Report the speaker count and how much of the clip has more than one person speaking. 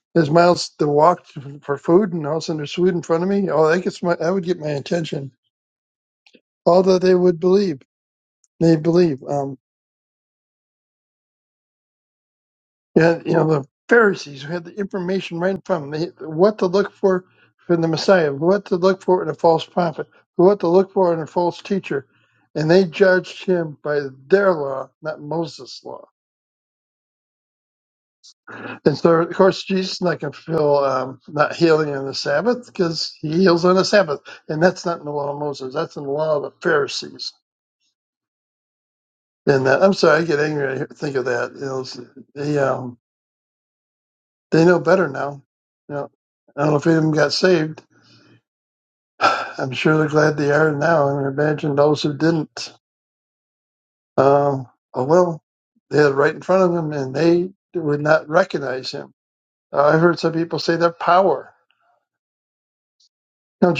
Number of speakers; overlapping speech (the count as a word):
one, no overlap